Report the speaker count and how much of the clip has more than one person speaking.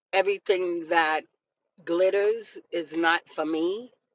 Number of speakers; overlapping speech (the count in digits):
1, no overlap